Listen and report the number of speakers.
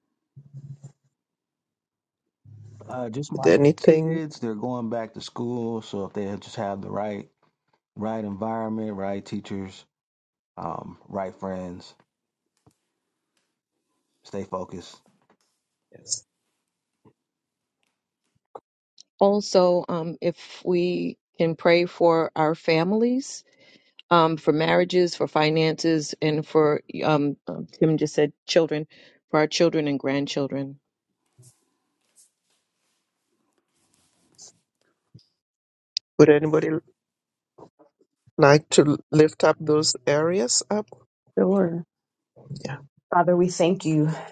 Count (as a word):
four